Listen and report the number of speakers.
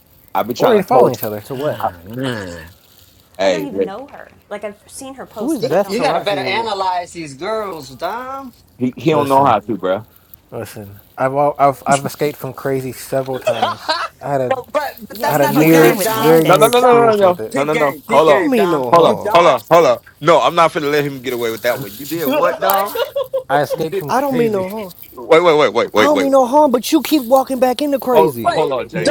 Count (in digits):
5